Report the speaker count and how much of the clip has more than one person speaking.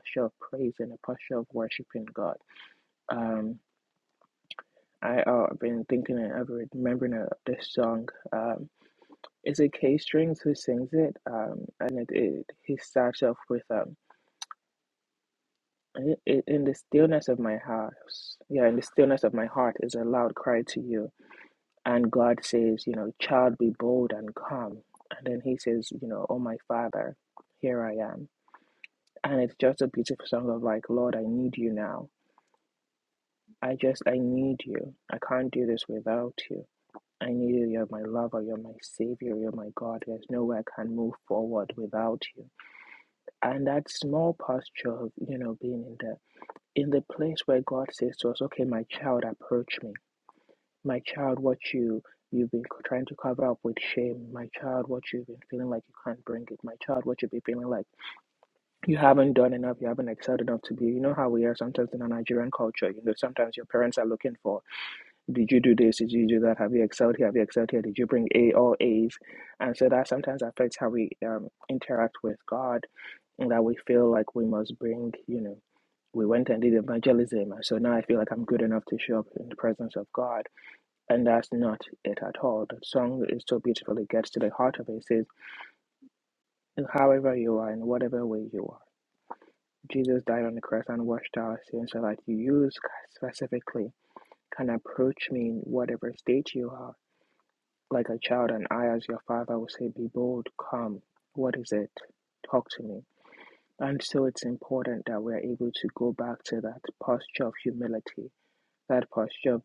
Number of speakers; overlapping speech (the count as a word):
one, no overlap